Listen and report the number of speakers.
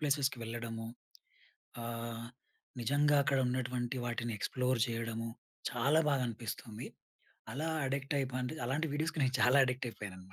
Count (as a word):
one